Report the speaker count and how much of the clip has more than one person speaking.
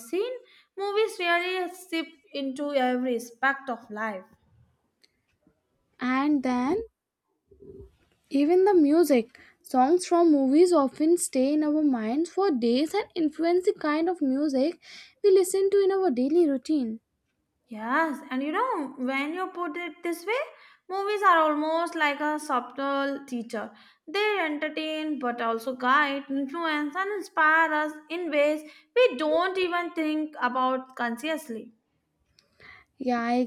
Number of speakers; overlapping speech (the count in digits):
2, no overlap